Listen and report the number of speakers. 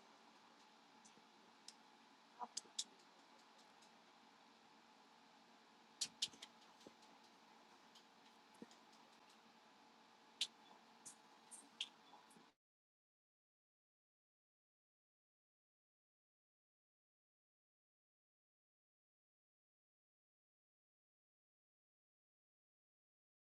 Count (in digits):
0